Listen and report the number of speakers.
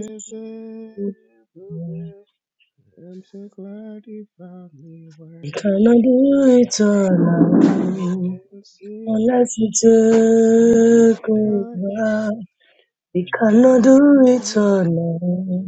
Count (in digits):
2